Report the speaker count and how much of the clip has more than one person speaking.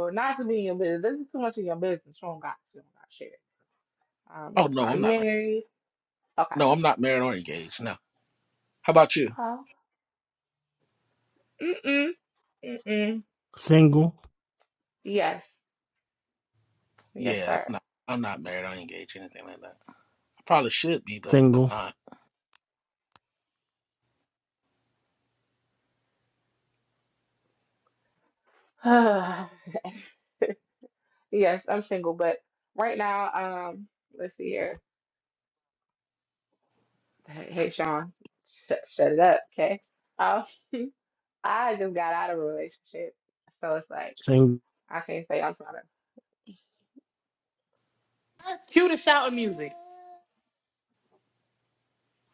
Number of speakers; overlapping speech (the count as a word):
four, about 3%